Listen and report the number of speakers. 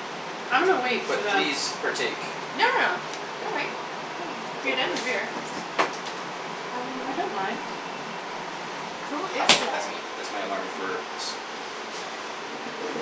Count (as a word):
three